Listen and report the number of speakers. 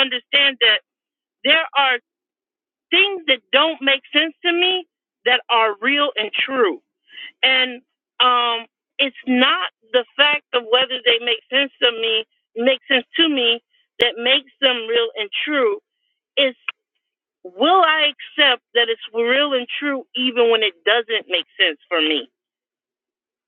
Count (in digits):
1